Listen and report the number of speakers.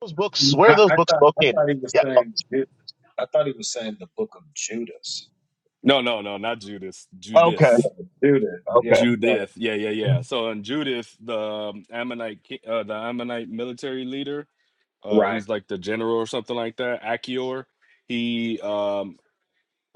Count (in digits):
3